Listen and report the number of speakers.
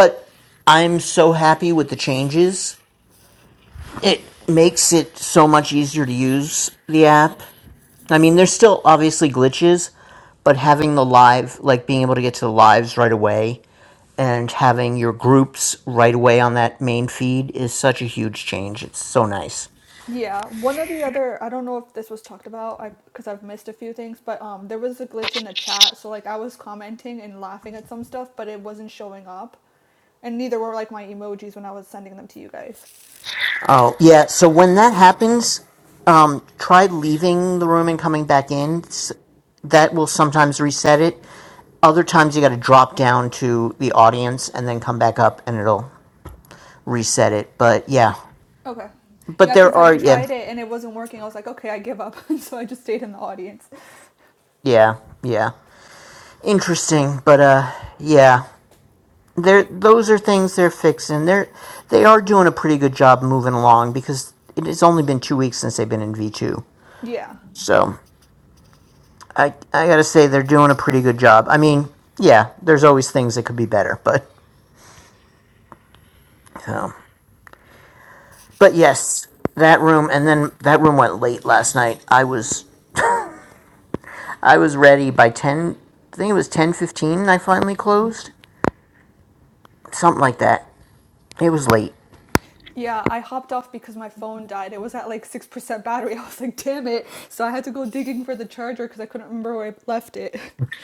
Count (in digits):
2